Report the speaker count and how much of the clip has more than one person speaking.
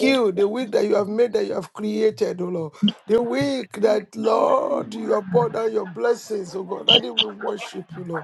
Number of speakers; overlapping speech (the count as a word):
one, no overlap